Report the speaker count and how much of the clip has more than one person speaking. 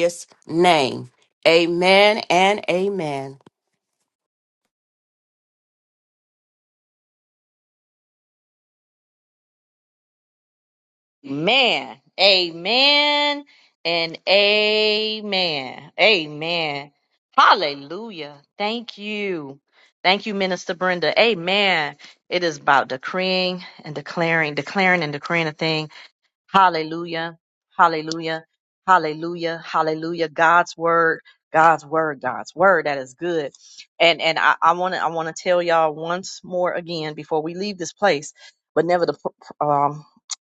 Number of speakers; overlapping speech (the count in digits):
2, no overlap